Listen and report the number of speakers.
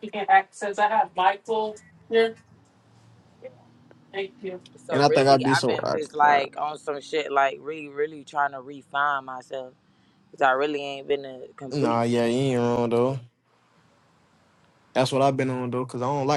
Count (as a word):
three